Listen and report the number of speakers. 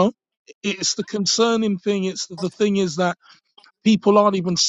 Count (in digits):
1